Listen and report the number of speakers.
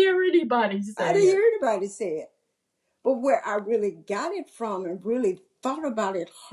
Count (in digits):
2